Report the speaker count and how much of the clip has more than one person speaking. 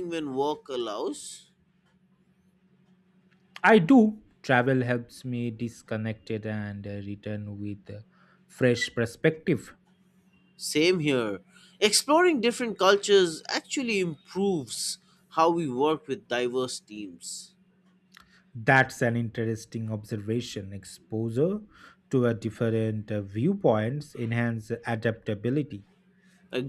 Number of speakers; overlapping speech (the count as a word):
two, no overlap